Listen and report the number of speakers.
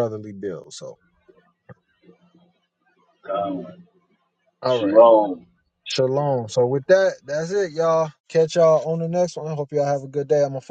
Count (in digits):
2